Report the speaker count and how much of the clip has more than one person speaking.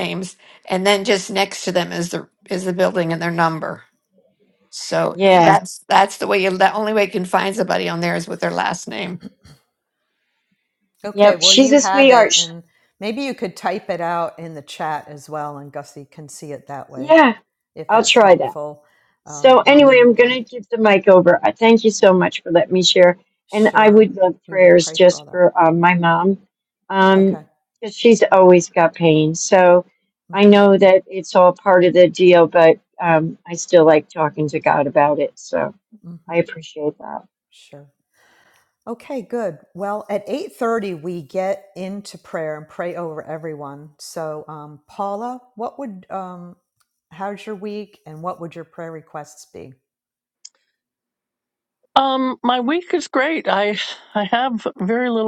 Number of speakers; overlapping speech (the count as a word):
four, about 10%